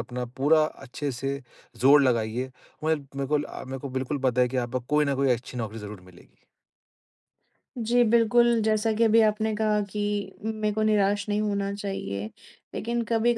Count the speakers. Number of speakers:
2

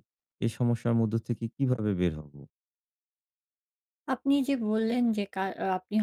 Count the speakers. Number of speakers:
2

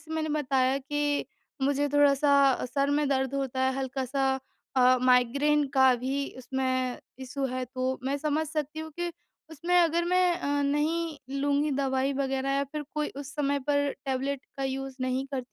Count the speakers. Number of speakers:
1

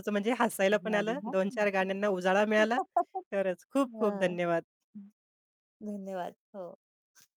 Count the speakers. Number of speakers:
2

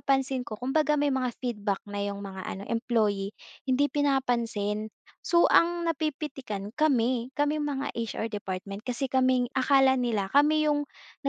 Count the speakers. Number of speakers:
1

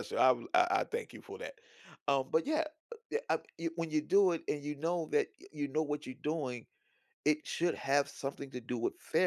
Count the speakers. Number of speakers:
1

